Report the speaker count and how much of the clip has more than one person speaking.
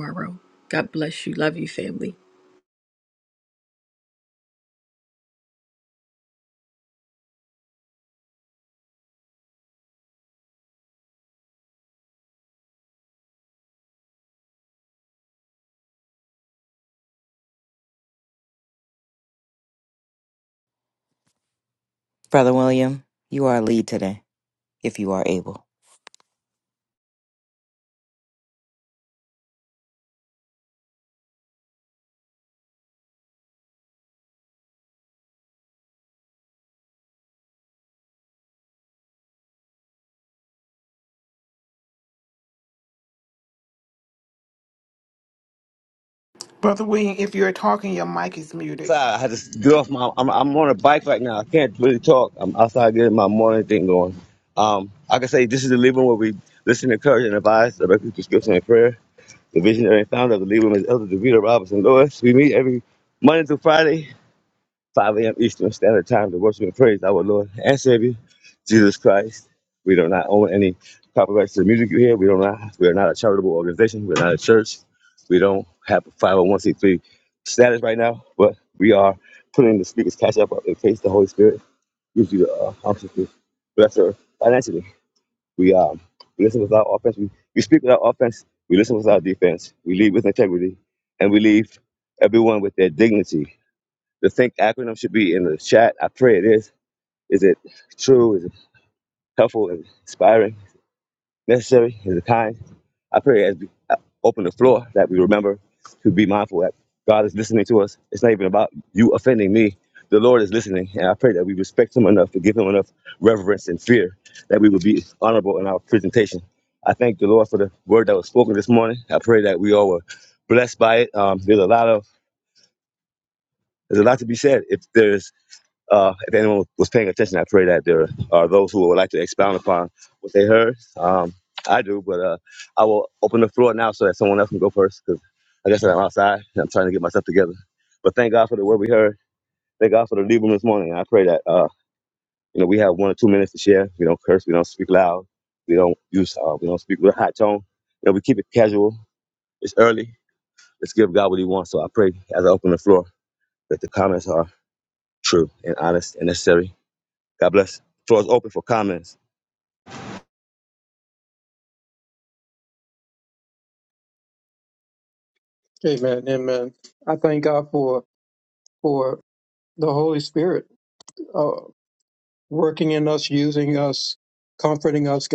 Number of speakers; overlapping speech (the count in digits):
5, no overlap